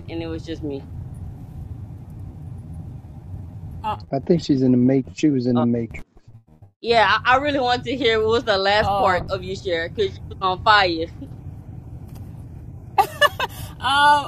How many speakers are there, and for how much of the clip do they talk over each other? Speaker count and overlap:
three, about 4%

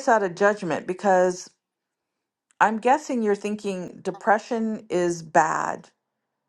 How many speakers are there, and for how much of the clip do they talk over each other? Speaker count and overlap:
one, no overlap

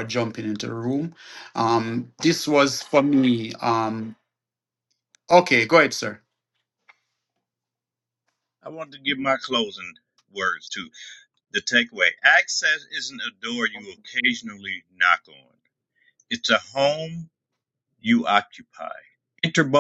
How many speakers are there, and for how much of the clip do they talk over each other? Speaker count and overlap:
two, no overlap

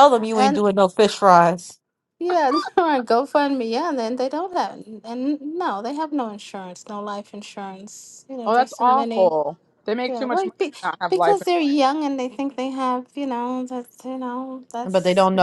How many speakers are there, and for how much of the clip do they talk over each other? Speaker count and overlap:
three, about 13%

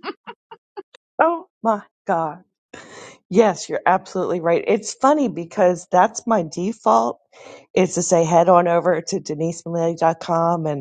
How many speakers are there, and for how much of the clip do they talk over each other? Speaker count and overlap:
one, no overlap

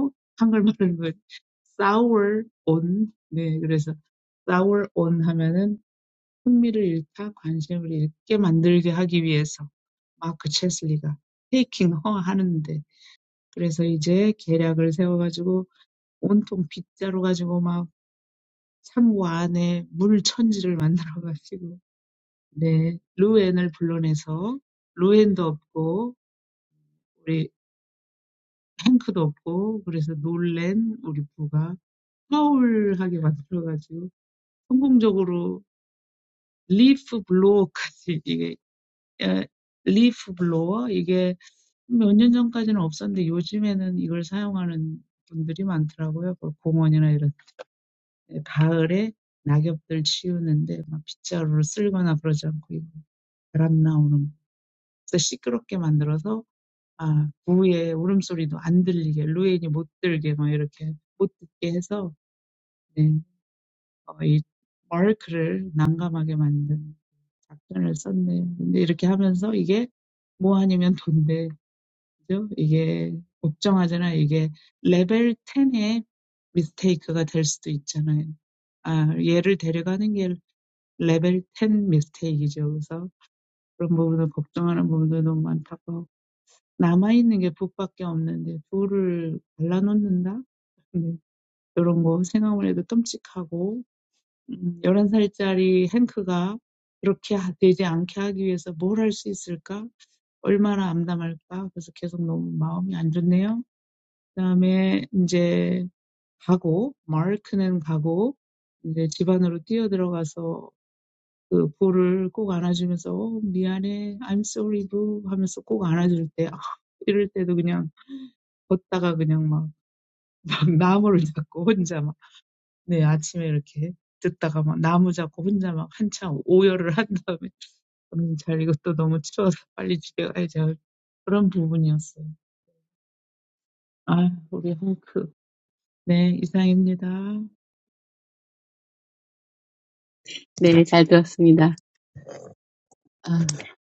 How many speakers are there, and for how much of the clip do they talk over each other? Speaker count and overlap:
two, no overlap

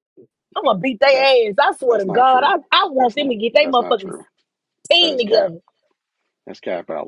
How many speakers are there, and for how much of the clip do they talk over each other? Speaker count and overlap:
two, about 36%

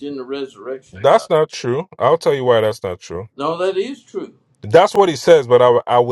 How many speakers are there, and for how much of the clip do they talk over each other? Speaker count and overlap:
two, about 2%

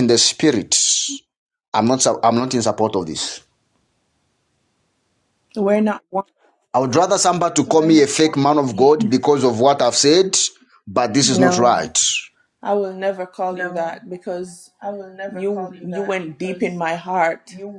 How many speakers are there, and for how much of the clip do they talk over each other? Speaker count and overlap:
two, about 3%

